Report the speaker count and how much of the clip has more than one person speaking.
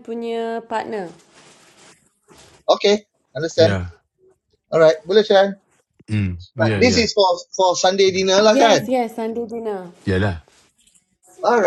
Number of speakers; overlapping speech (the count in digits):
3, about 9%